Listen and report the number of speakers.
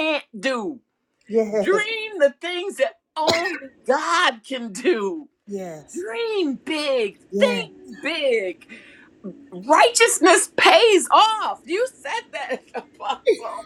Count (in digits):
2